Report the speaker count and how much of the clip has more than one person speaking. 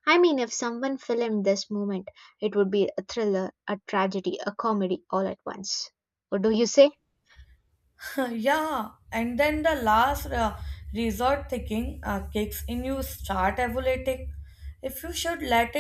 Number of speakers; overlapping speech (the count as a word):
two, no overlap